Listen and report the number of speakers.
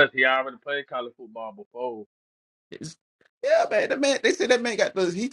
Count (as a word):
two